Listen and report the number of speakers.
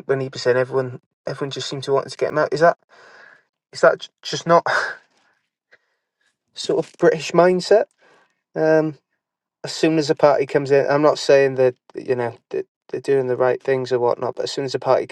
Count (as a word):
one